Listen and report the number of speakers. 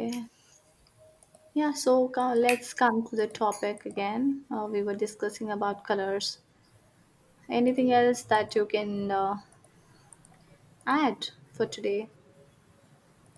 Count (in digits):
1